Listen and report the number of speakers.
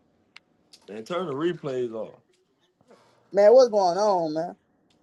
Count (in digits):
2